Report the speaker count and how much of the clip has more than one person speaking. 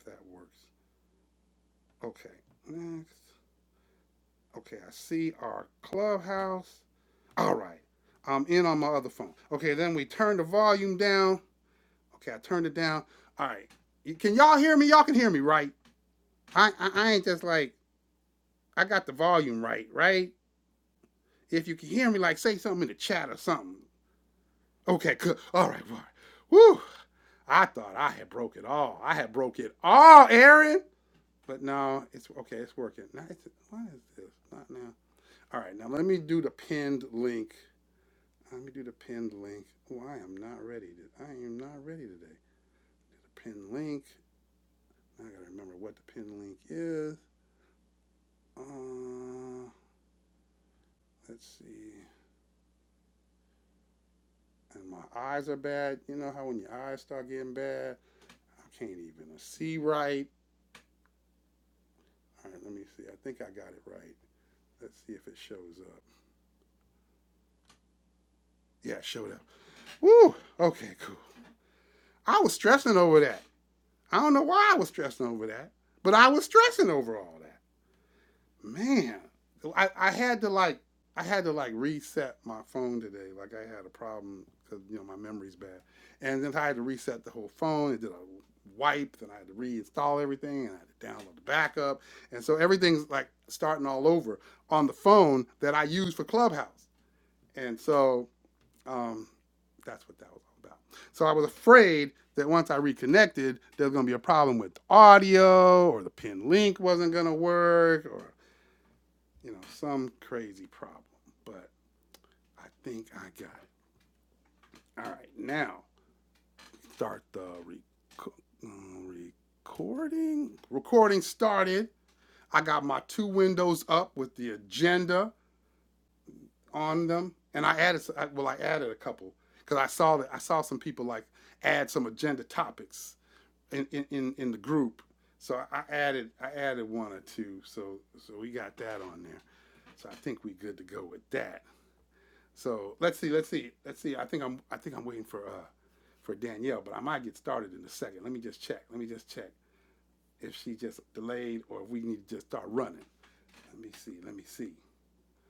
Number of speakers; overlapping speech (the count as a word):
one, no overlap